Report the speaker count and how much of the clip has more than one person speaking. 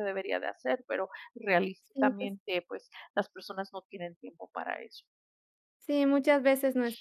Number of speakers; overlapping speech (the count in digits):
2, about 5%